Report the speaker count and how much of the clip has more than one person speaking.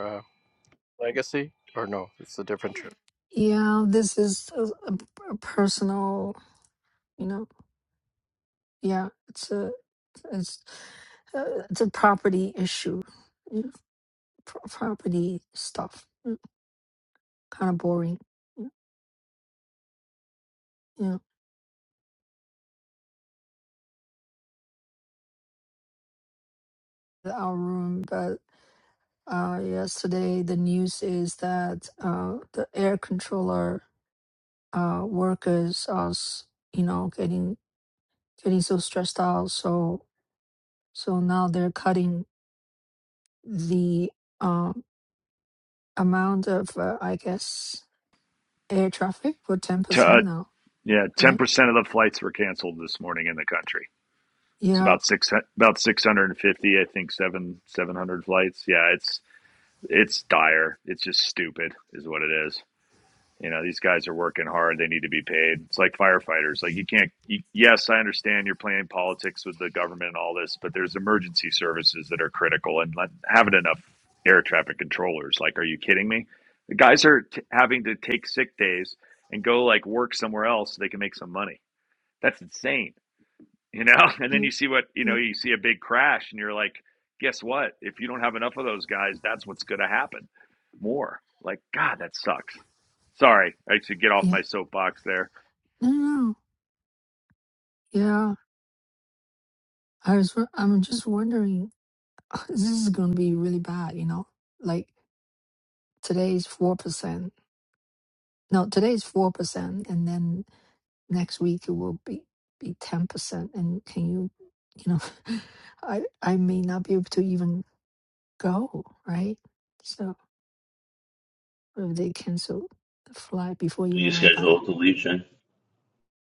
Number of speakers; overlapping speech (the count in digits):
4, about 1%